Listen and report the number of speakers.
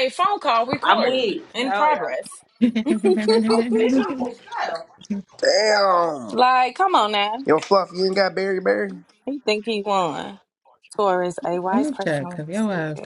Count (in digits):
4